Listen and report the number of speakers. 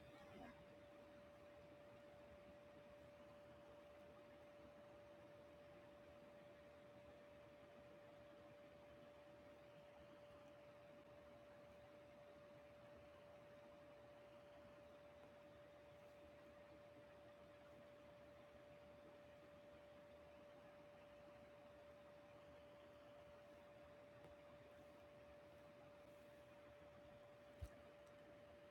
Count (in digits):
0